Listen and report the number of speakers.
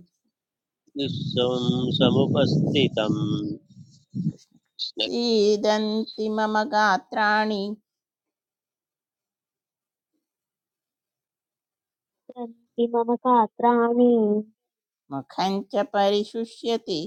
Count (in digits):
3